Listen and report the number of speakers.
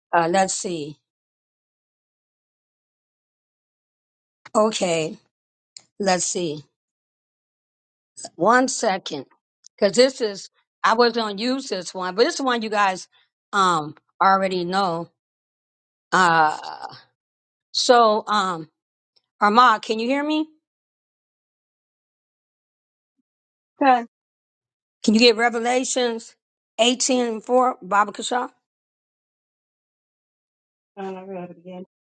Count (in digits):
2